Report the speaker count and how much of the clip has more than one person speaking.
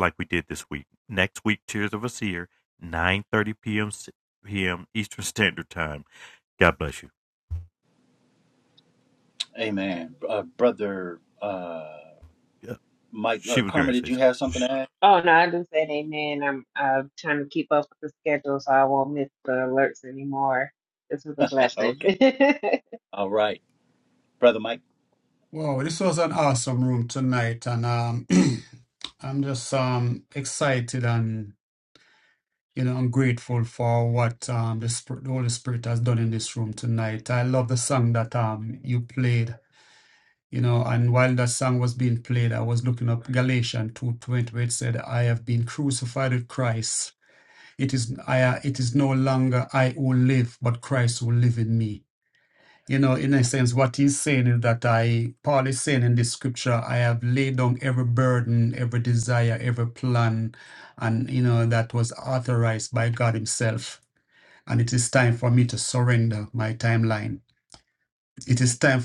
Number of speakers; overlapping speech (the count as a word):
four, about 2%